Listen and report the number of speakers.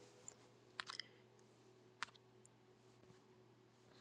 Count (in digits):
0